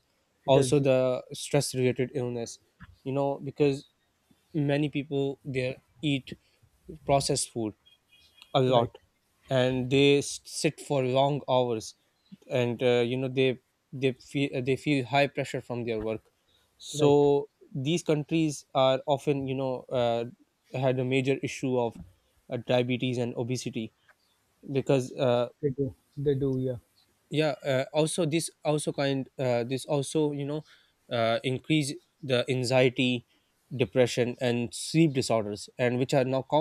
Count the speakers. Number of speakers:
2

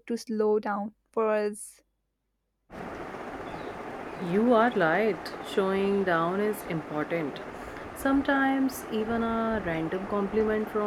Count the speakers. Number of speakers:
2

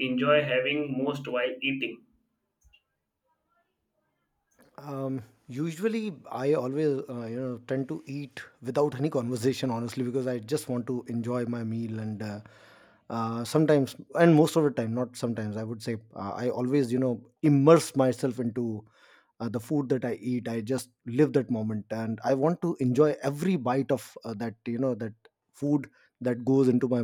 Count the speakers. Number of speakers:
2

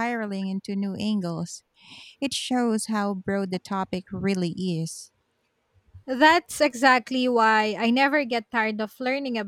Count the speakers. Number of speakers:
2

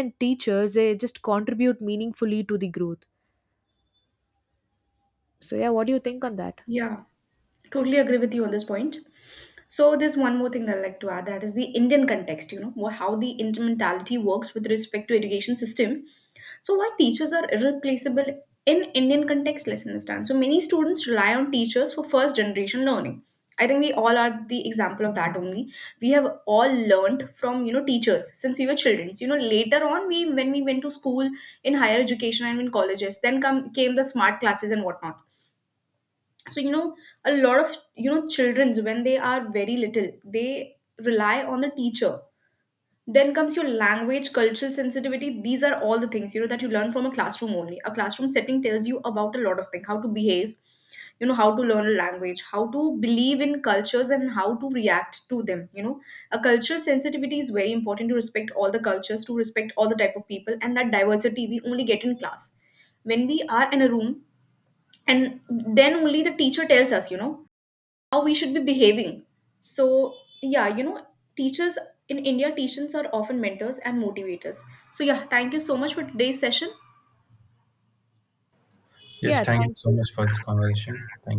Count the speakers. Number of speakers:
3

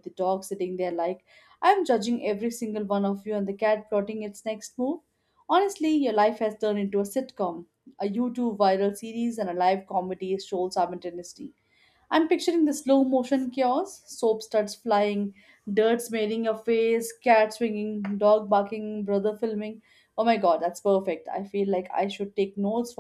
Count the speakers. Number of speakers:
1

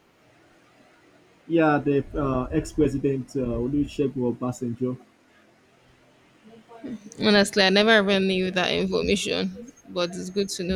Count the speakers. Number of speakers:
2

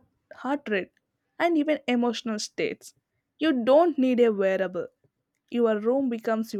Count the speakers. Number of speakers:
1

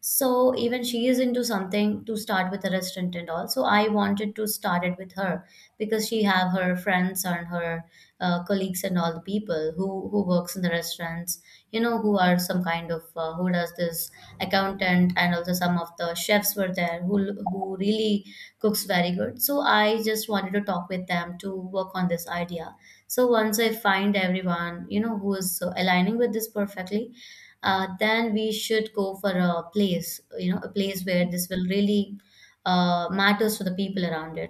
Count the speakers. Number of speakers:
1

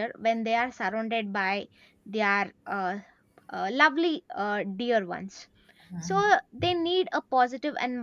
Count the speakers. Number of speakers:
1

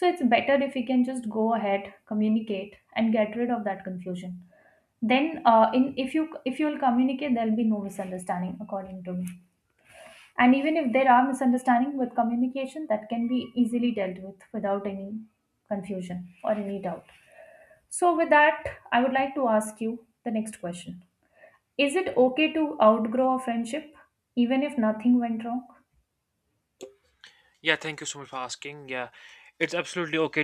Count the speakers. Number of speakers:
2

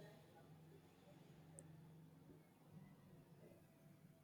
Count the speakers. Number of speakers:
0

